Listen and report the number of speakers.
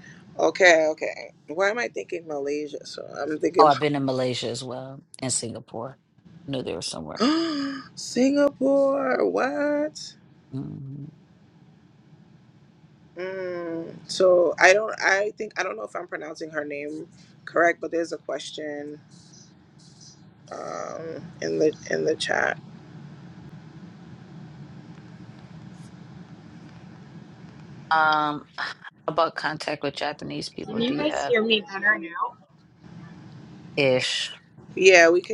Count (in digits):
3